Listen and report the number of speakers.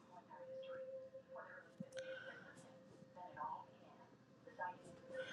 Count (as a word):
zero